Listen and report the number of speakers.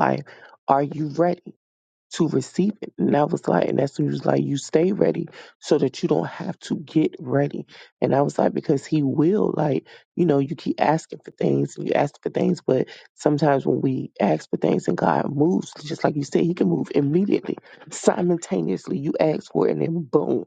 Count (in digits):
1